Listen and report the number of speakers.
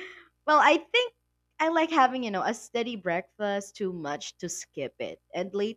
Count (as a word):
one